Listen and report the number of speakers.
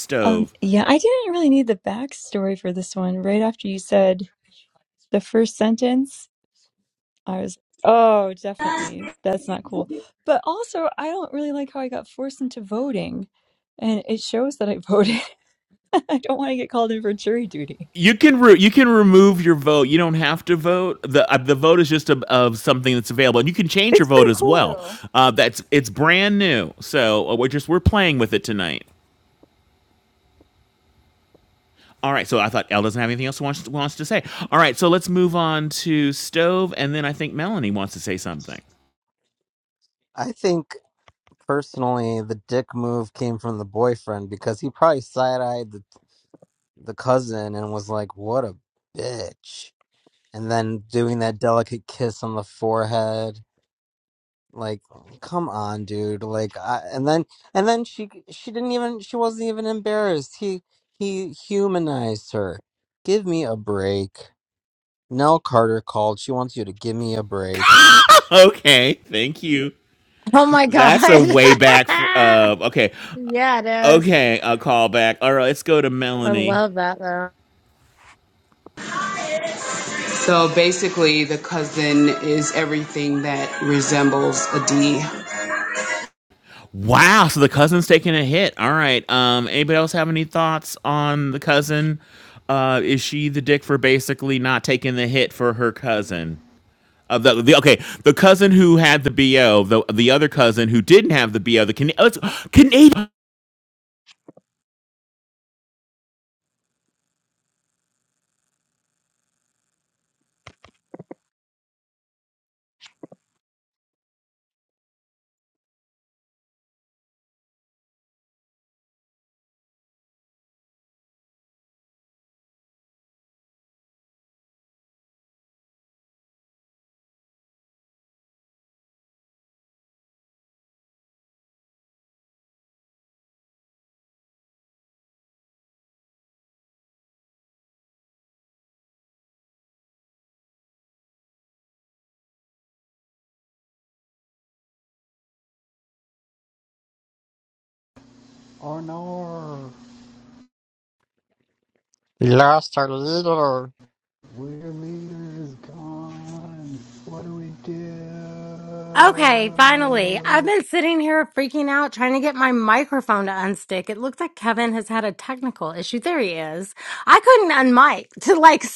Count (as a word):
six